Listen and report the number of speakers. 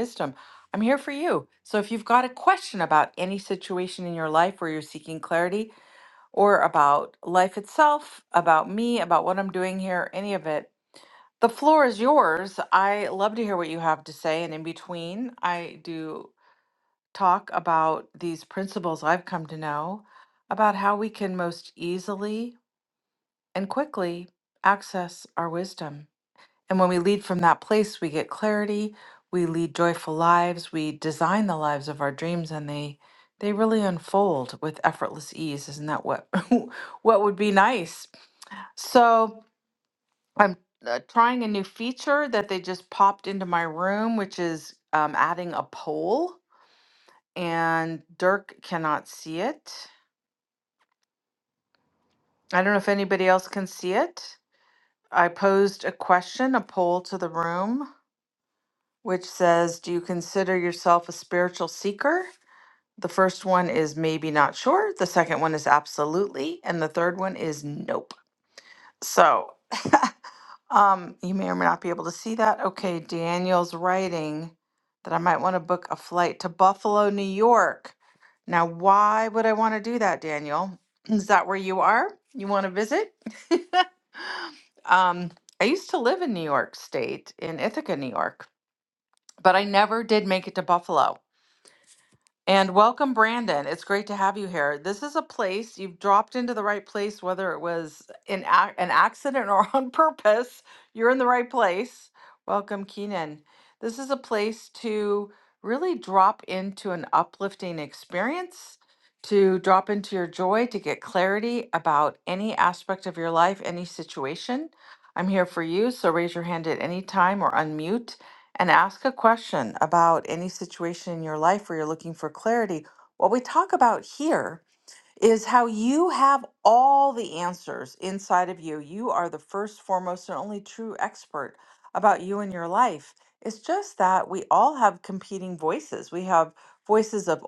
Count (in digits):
1